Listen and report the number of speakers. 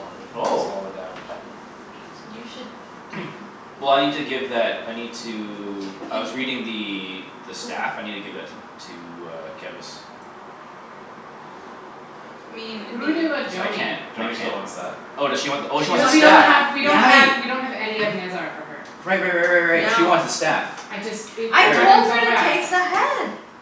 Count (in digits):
4